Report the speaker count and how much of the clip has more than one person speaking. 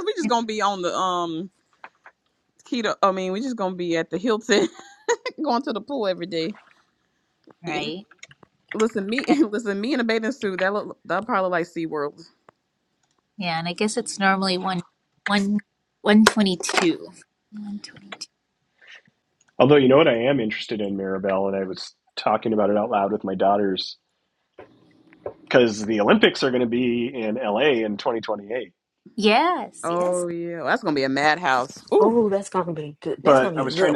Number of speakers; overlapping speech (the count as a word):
four, about 5%